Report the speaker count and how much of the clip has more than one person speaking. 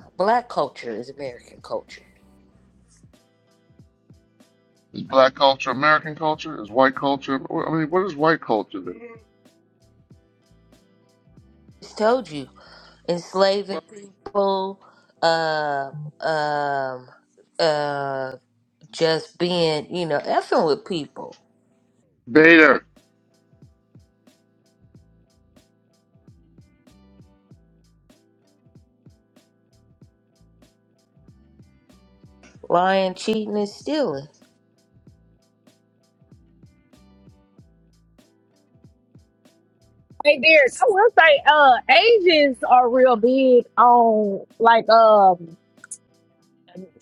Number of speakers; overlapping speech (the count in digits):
3, no overlap